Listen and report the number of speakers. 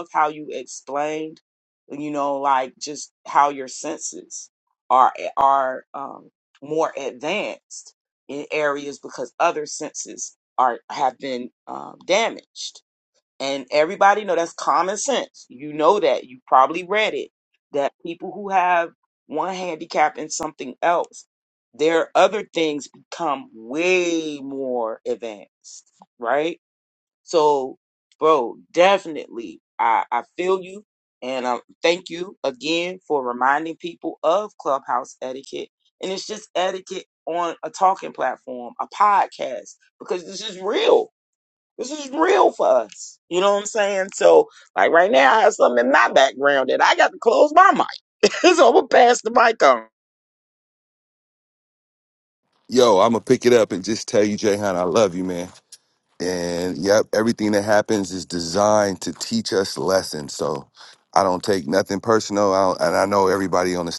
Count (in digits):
2